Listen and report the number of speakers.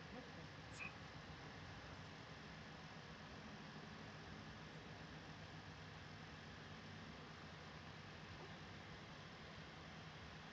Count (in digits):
0